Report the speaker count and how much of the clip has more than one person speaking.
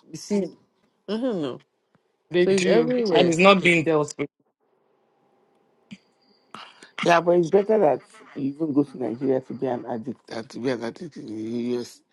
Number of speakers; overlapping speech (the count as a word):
three, about 7%